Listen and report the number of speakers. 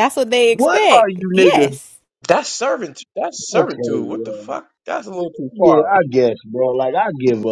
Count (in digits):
3